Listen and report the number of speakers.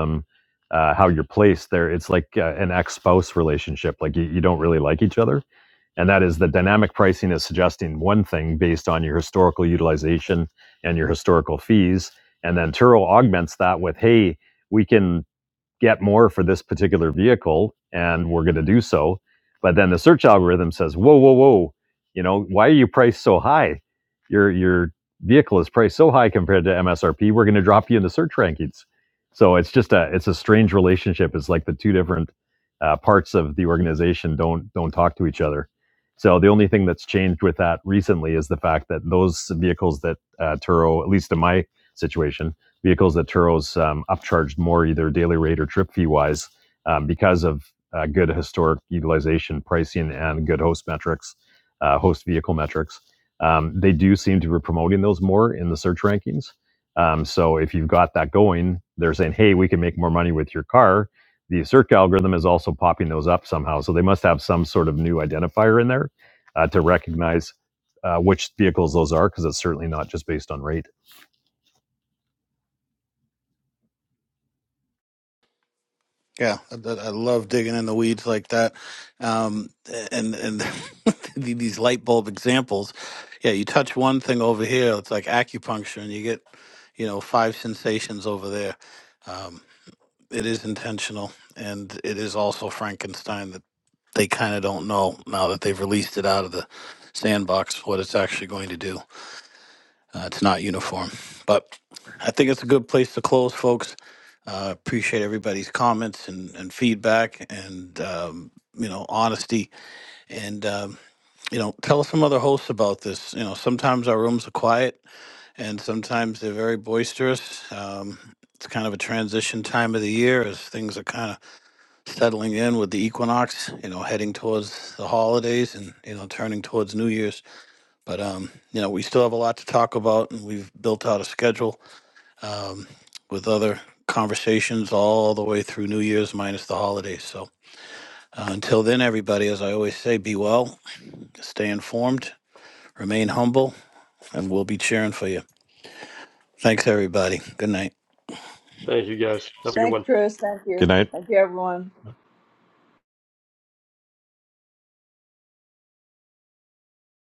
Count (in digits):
4